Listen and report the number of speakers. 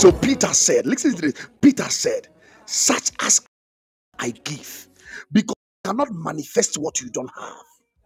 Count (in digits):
1